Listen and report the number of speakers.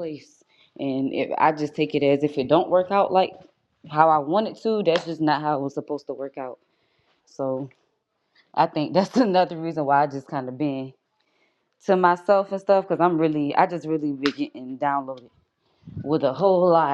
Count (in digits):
1